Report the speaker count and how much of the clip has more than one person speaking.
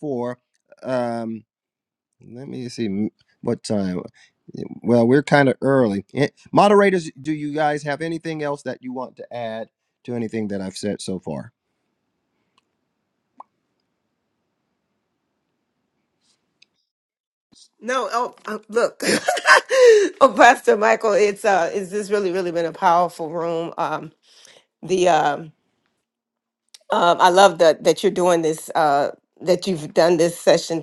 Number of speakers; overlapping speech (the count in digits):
2, no overlap